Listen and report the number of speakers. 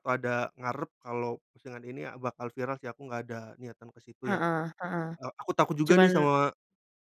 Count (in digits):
2